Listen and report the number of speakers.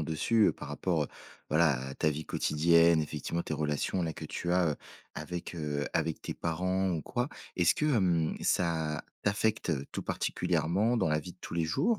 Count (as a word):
one